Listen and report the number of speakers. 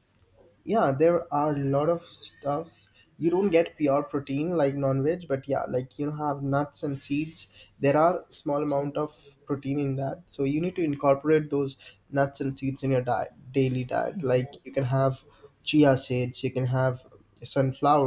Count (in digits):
1